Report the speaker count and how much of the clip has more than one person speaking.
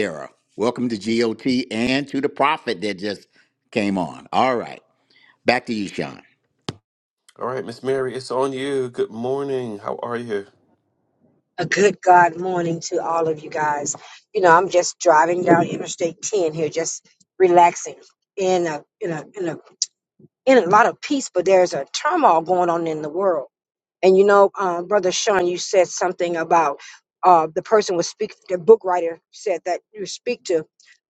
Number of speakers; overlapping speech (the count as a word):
three, no overlap